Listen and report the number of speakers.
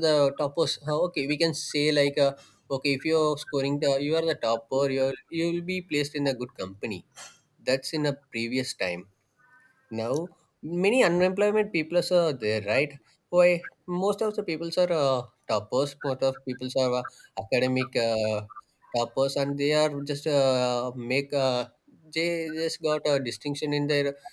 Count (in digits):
1